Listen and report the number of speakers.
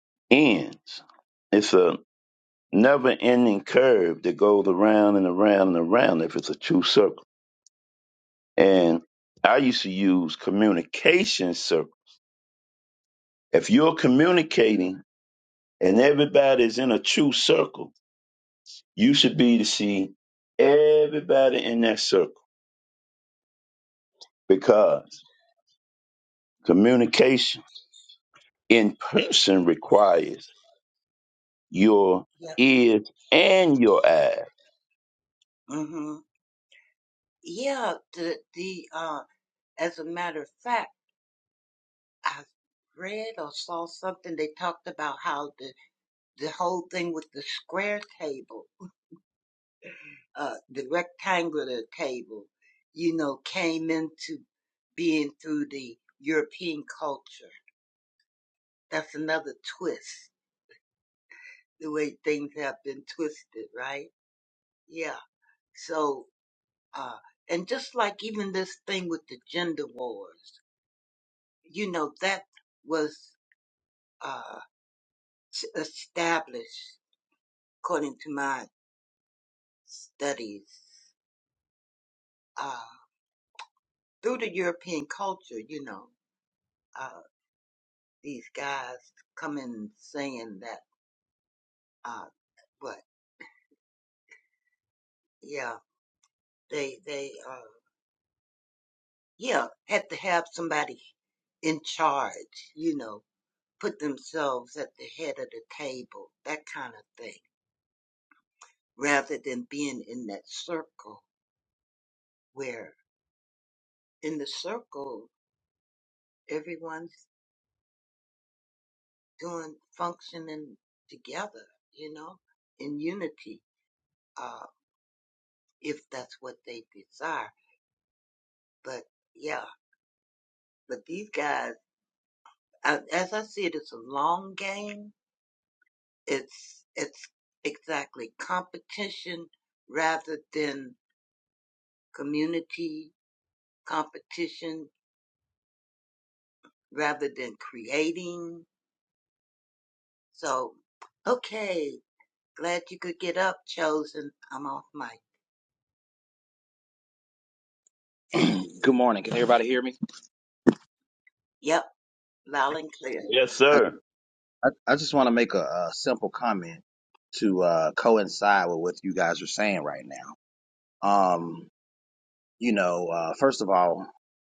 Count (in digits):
3